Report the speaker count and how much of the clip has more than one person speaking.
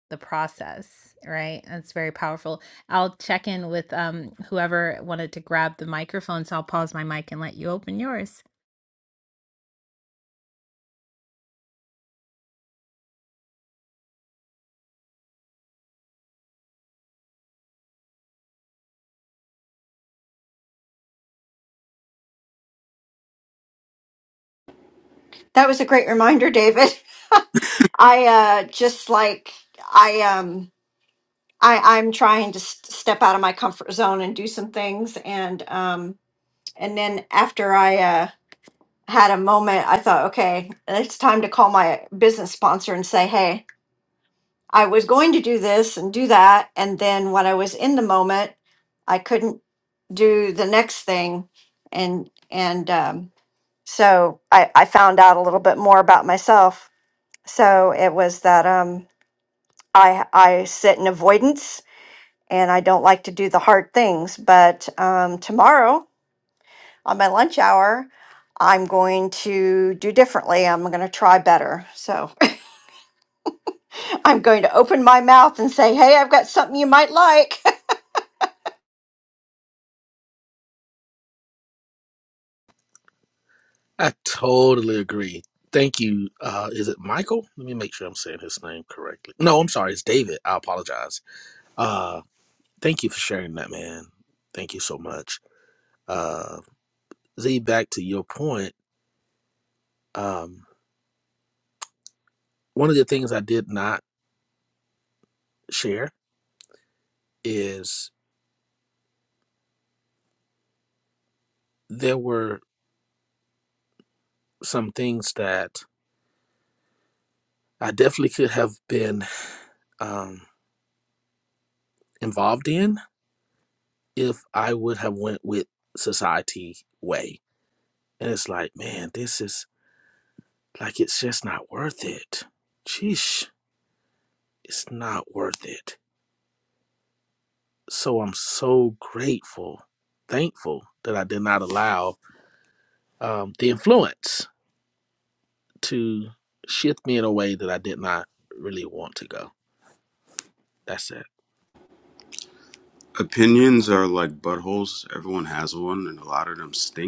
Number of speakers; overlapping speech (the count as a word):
four, no overlap